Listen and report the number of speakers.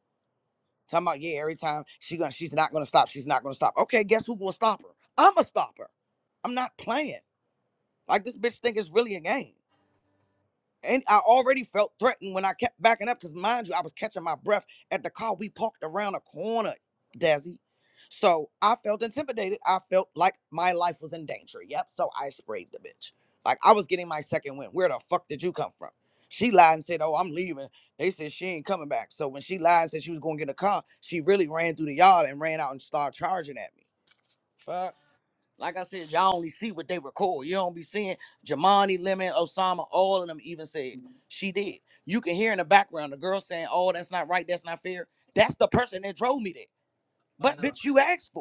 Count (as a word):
one